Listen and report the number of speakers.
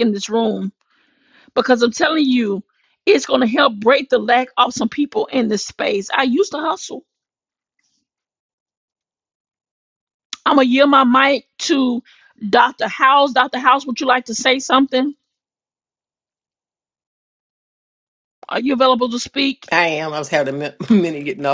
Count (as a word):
two